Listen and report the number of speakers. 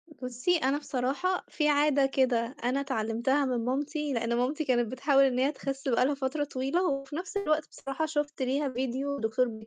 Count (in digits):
1